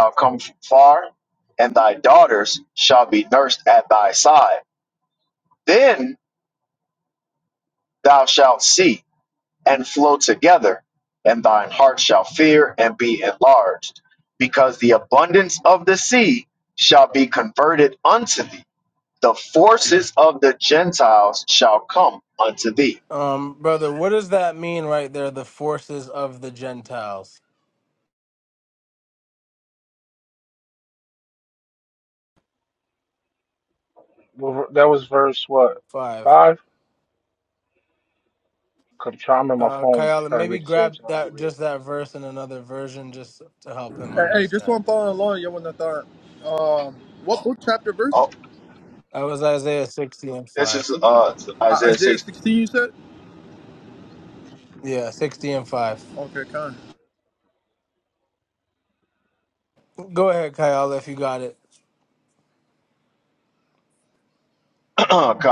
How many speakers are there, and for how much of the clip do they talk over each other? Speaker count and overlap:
four, about 5%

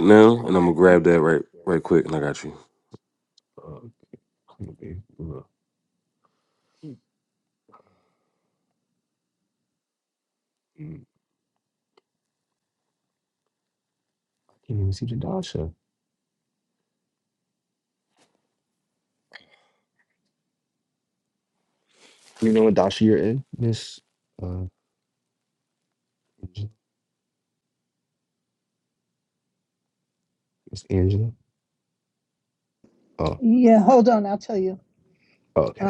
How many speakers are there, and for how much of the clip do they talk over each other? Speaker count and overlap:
three, about 2%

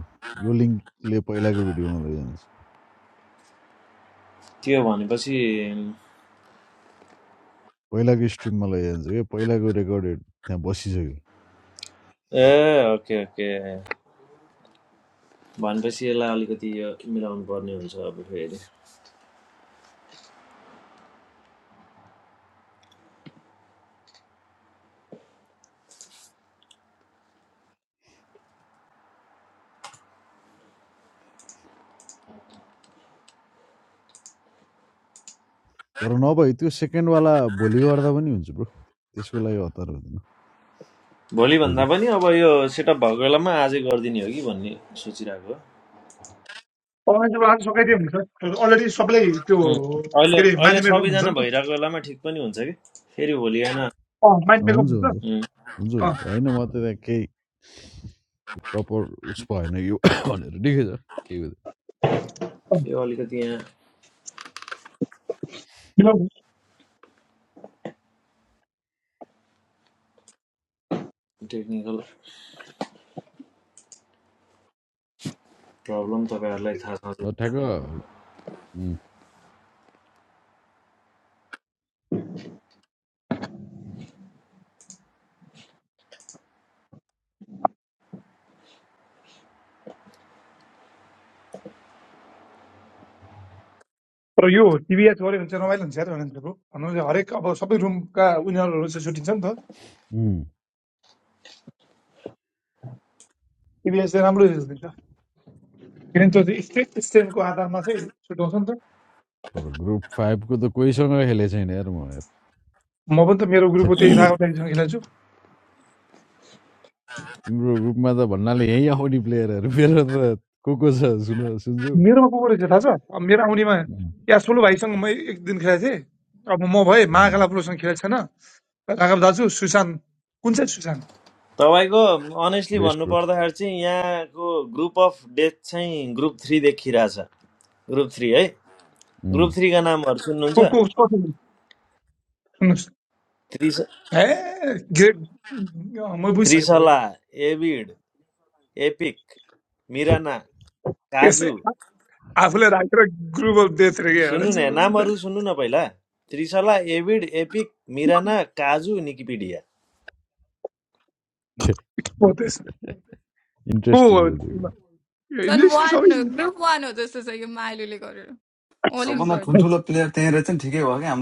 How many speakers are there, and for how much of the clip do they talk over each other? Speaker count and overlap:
five, about 4%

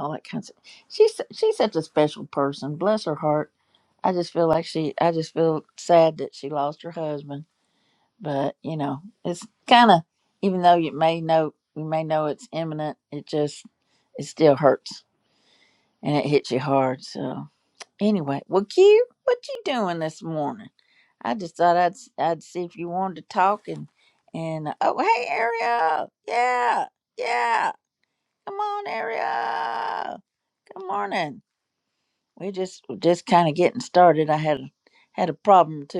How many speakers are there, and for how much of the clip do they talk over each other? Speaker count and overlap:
one, no overlap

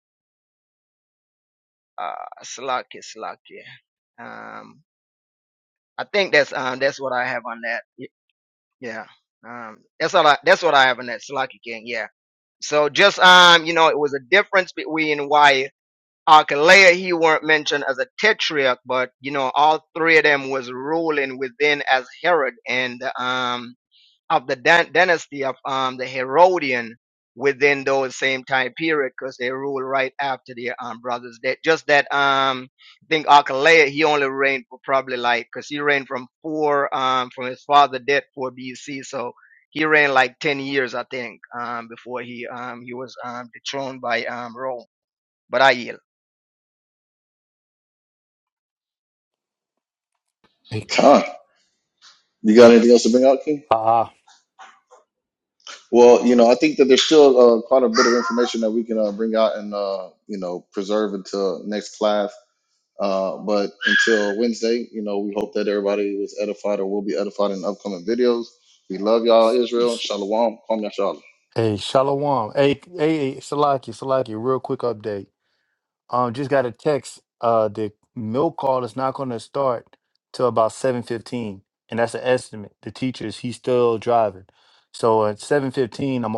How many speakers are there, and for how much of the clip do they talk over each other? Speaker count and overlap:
three, under 1%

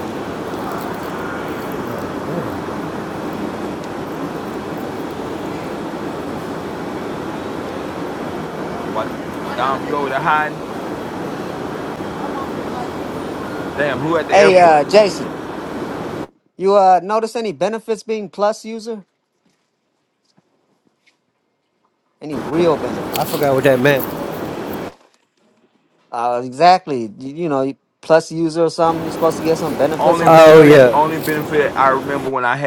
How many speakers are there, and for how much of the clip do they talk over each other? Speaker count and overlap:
three, about 5%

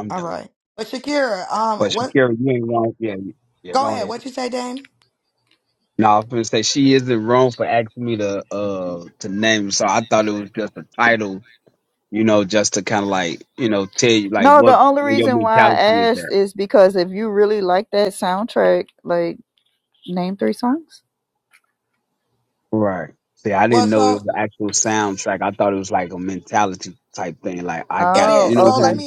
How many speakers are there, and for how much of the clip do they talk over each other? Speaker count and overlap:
three, about 14%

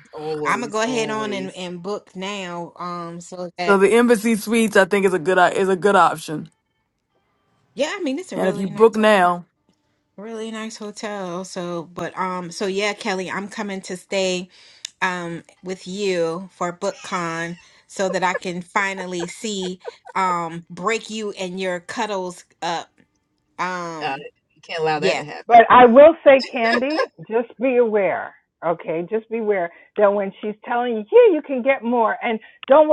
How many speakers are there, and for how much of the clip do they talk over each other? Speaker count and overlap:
four, about 7%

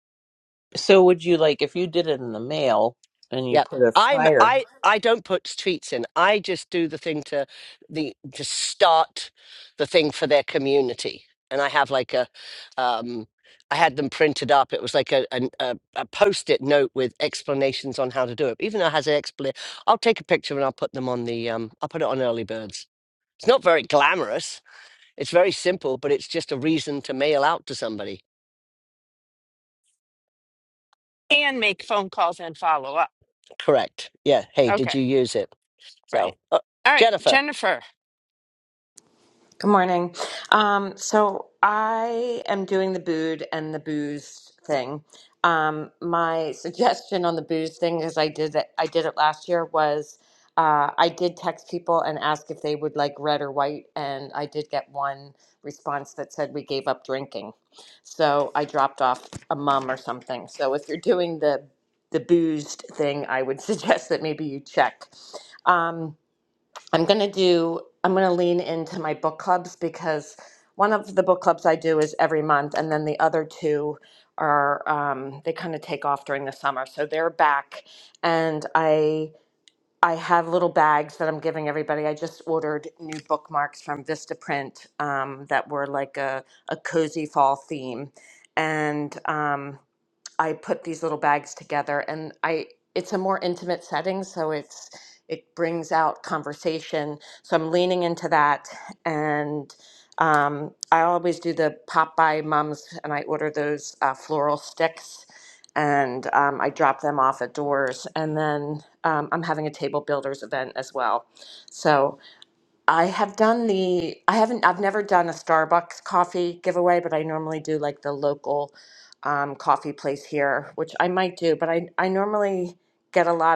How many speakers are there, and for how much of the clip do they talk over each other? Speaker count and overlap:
four, about 2%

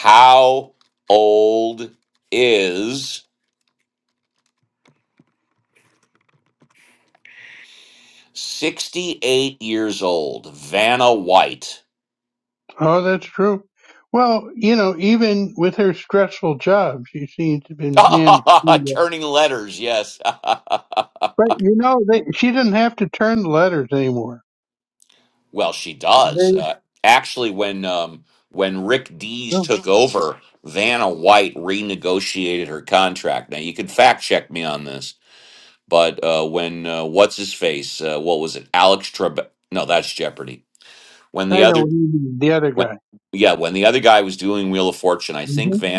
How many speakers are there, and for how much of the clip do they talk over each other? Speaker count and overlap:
two, about 3%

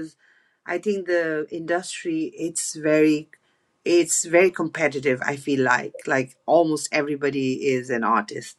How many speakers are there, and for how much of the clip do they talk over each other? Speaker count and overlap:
one, no overlap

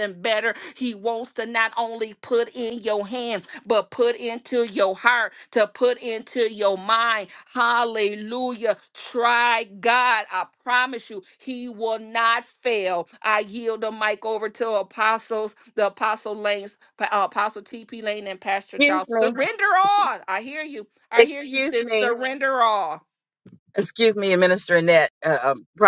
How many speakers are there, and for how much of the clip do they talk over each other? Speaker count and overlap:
two, about 6%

